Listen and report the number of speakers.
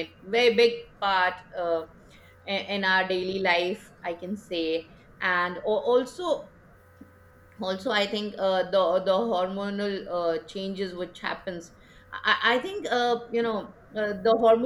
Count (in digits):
1